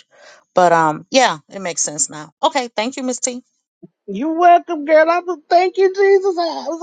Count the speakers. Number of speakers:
2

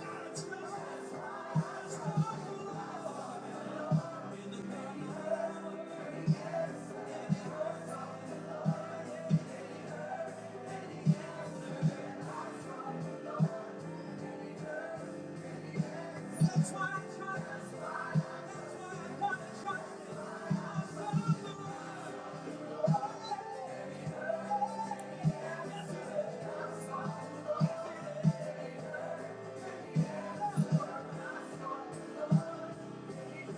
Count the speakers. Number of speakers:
0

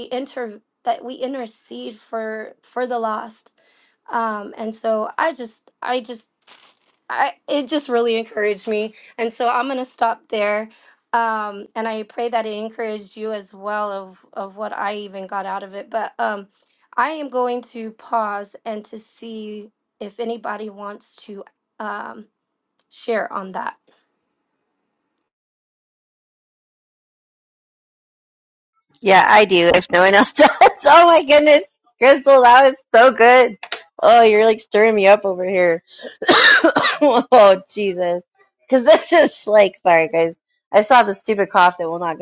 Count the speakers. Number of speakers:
2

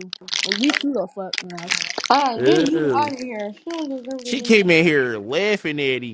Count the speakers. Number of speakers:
3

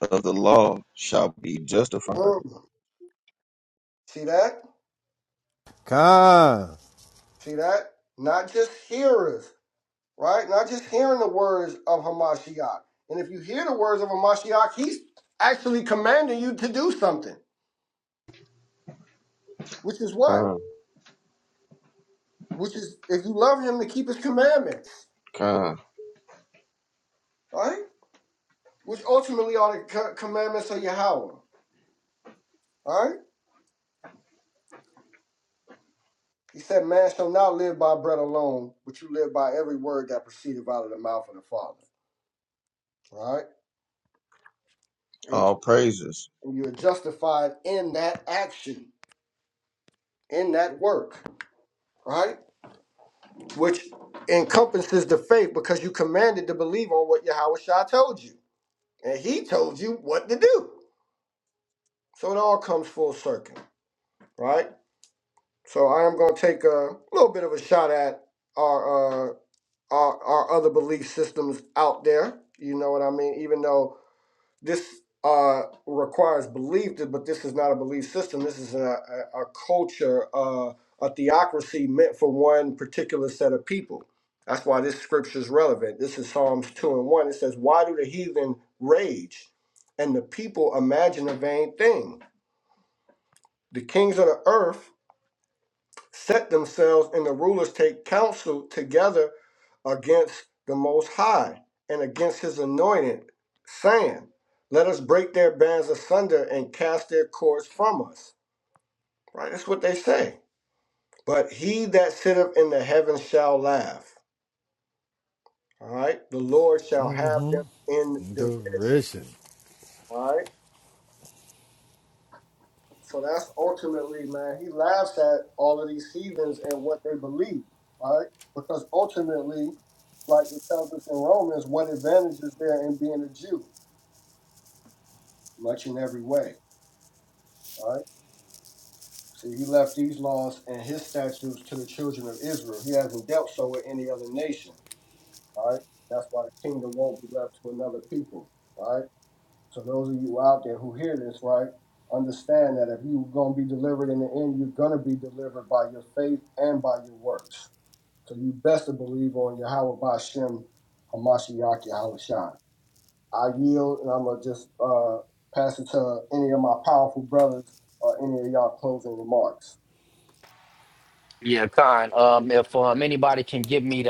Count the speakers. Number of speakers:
4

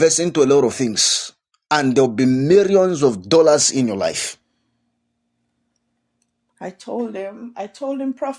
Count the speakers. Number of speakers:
2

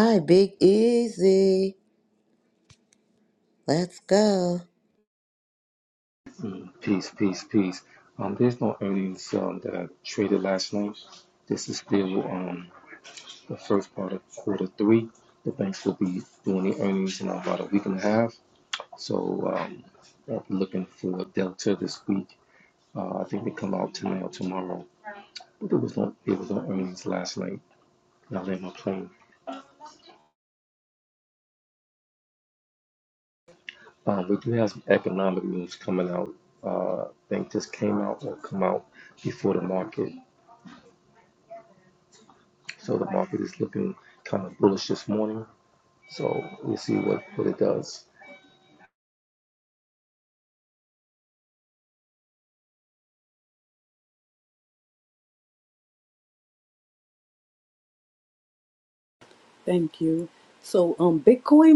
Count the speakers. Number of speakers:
3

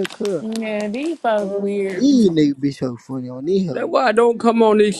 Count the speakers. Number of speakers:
3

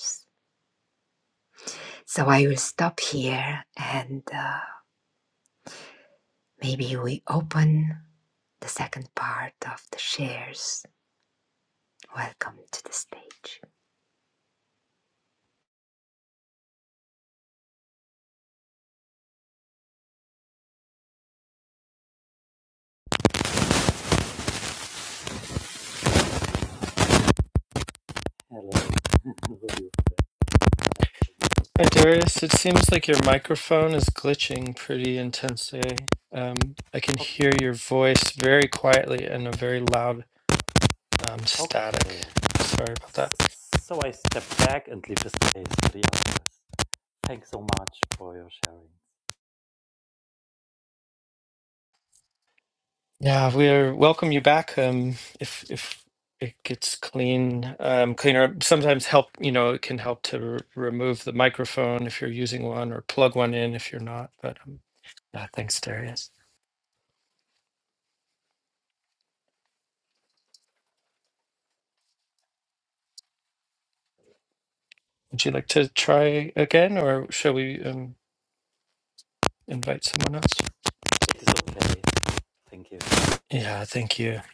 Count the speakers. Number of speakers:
3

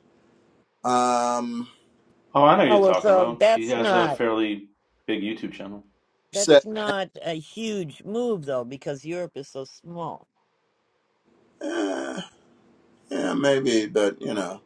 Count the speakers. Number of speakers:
3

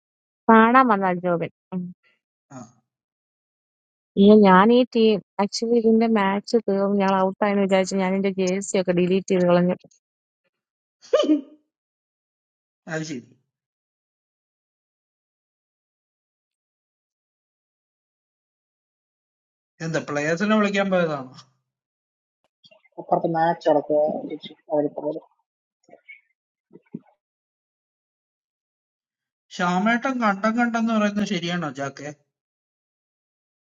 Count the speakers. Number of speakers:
3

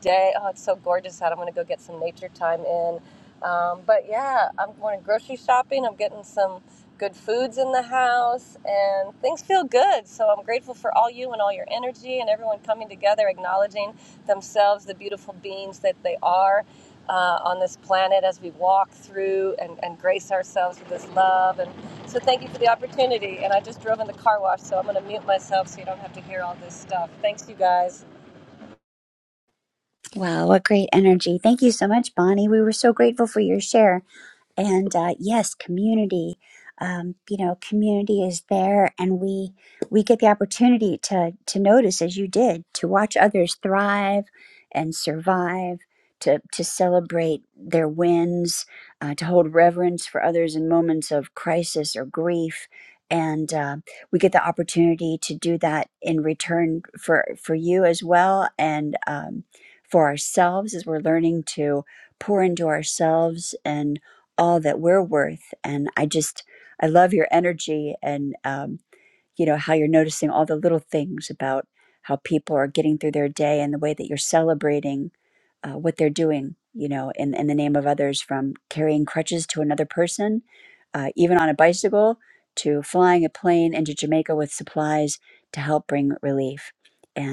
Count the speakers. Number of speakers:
2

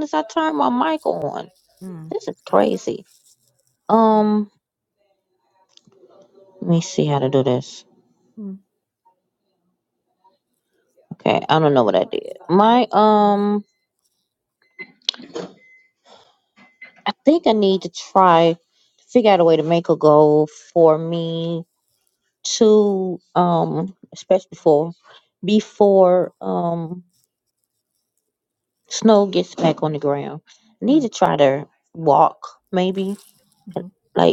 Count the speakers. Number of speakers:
2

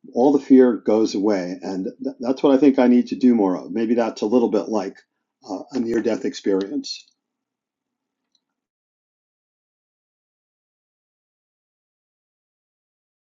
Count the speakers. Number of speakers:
1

